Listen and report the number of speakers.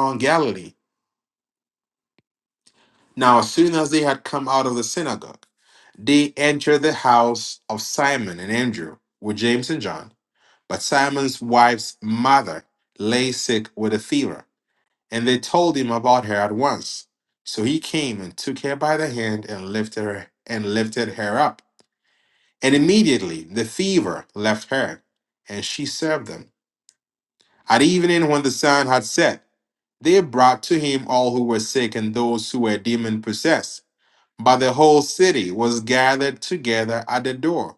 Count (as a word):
one